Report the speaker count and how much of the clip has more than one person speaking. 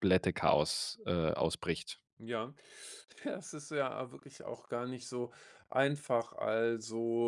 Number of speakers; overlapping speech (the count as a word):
two, no overlap